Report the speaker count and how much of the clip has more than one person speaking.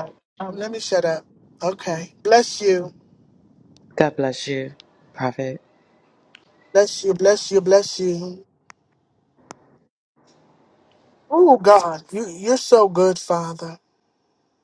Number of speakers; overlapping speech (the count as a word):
two, no overlap